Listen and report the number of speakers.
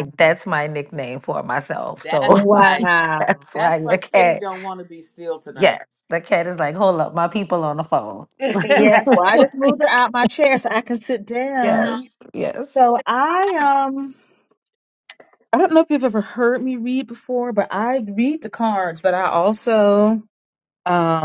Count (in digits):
3